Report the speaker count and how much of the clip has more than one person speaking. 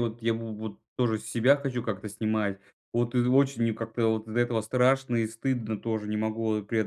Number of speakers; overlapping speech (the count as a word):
one, no overlap